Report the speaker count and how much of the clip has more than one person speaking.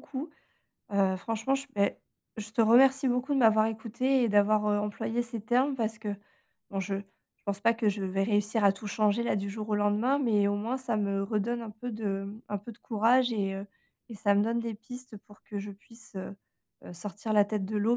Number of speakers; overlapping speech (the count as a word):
one, no overlap